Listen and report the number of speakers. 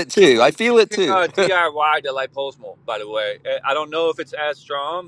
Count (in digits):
2